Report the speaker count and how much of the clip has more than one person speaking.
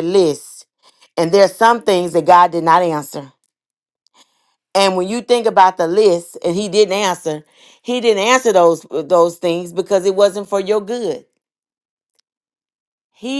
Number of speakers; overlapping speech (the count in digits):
1, no overlap